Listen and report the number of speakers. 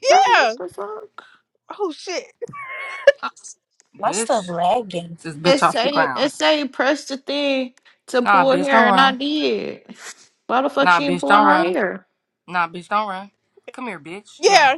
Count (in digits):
4